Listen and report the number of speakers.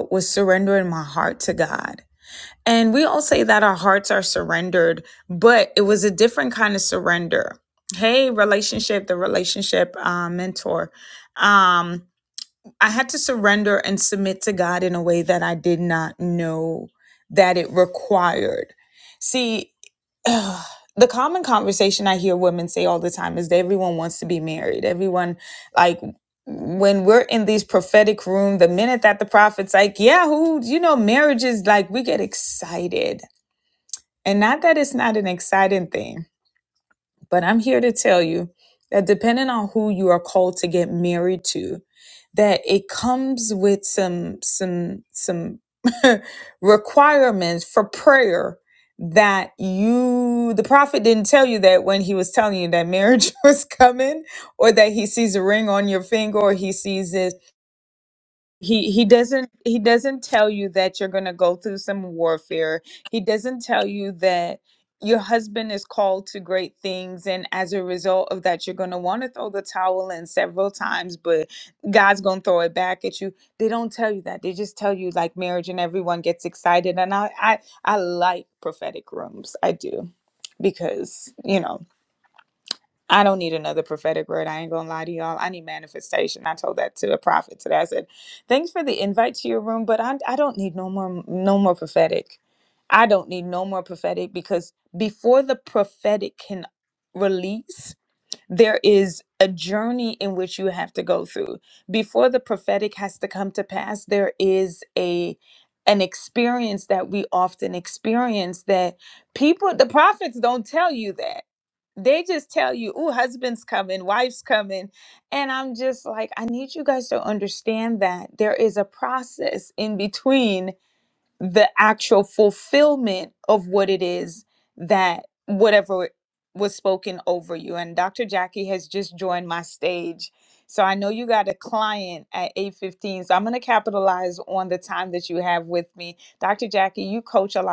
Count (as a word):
one